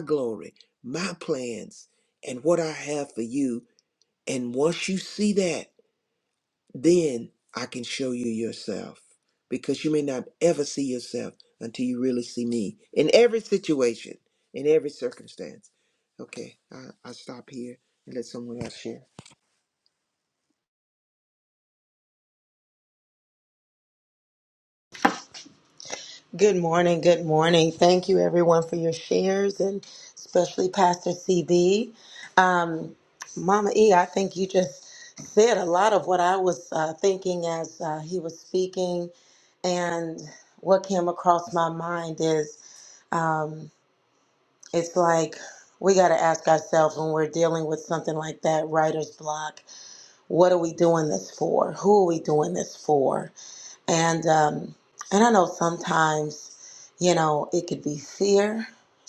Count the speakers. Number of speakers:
2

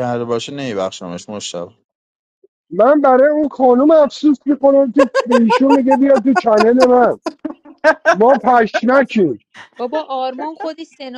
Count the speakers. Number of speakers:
3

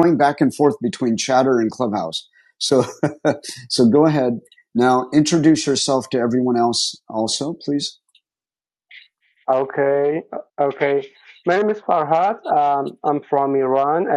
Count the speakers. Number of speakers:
2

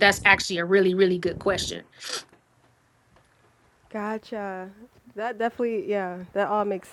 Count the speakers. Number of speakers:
2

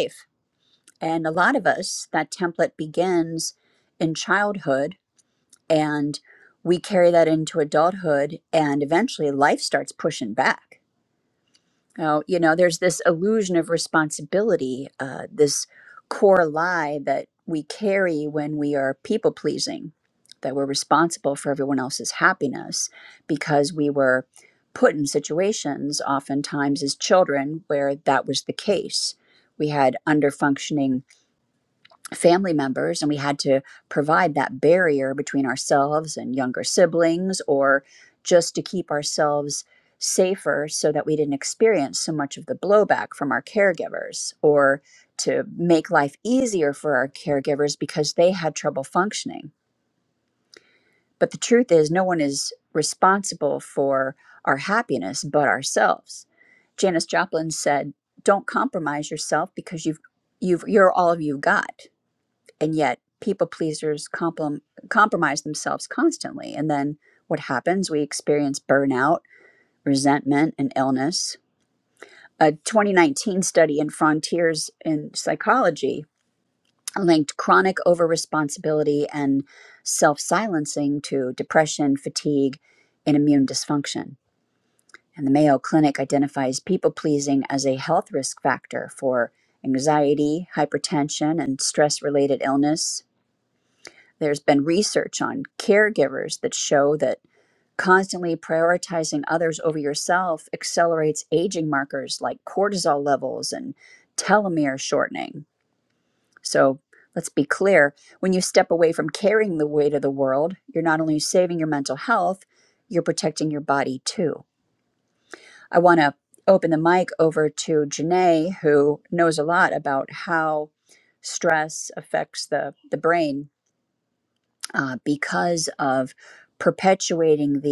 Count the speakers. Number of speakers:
1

